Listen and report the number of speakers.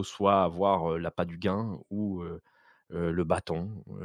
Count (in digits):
1